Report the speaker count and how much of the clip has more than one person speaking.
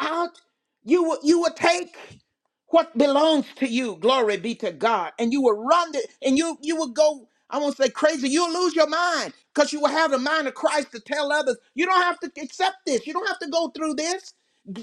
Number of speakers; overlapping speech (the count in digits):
1, no overlap